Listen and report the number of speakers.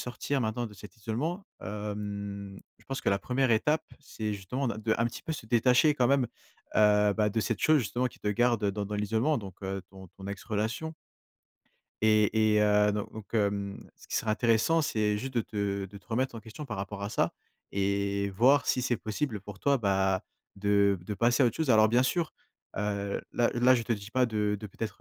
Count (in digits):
1